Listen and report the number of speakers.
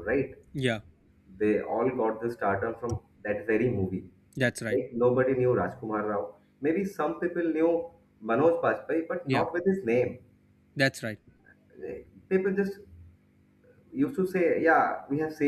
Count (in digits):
2